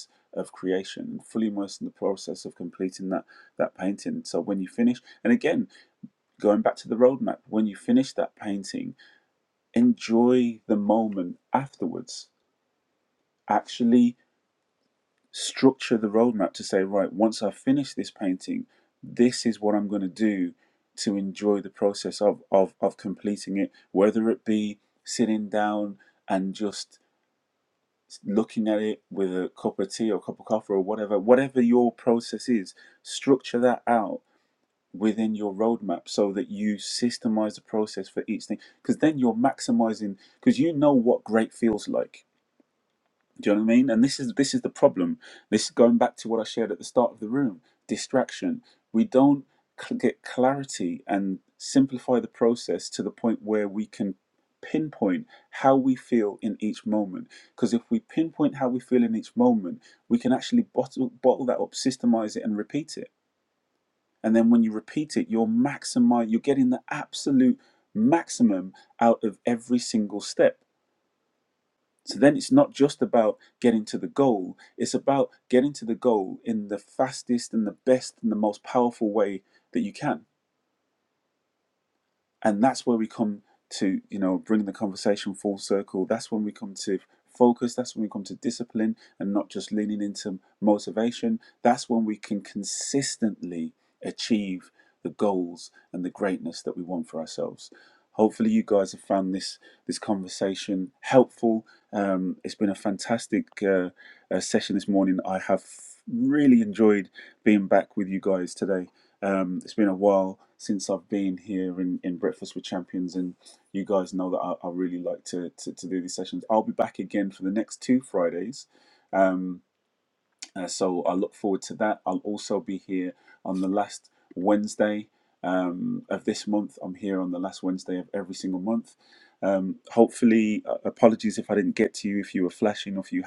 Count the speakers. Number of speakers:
one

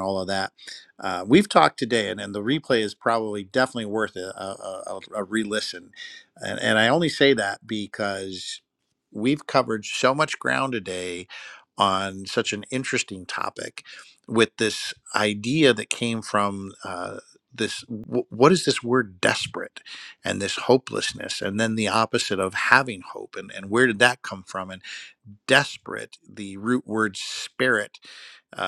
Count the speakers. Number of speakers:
one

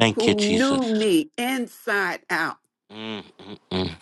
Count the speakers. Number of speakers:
two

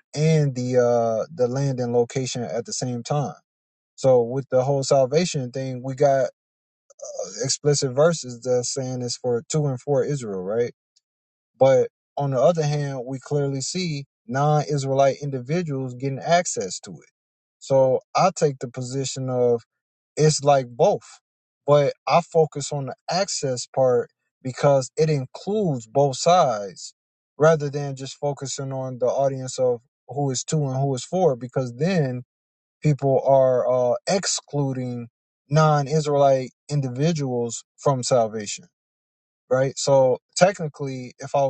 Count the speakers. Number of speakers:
one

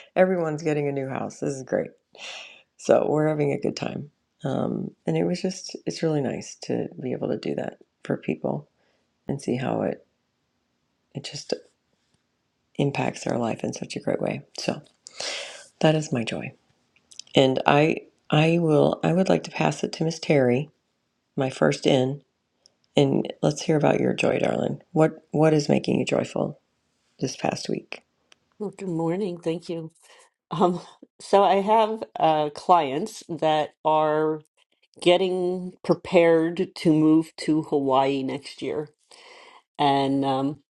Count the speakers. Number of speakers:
two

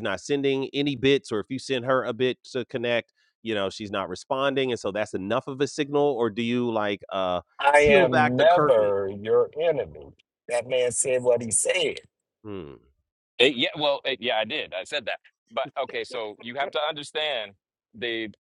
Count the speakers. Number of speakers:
three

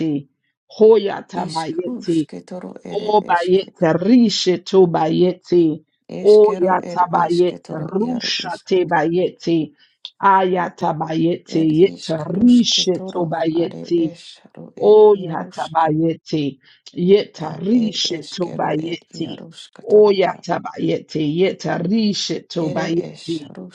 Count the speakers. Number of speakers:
two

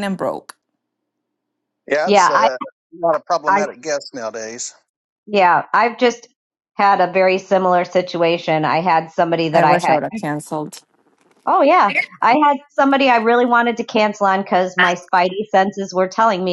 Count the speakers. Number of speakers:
three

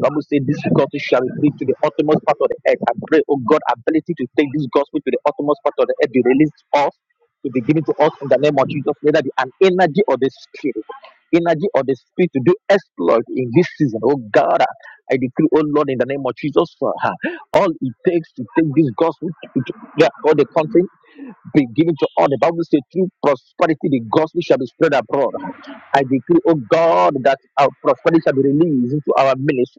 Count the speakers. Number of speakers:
one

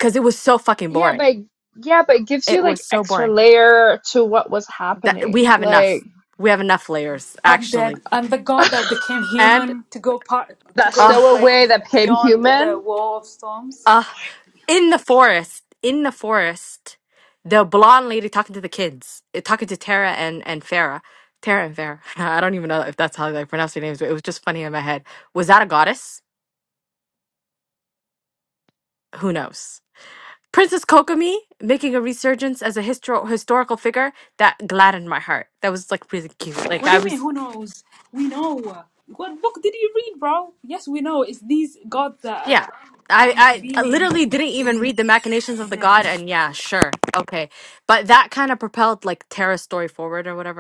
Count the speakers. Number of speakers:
three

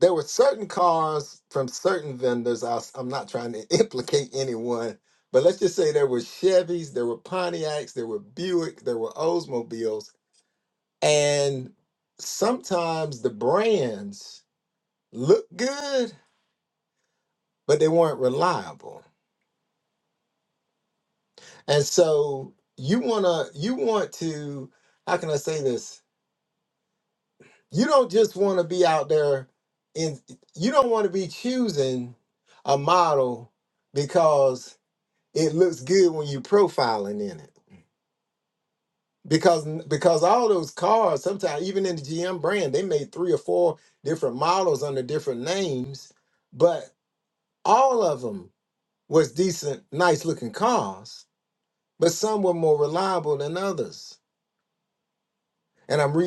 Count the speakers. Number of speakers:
one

